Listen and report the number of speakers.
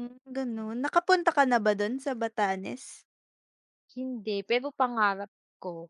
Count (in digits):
2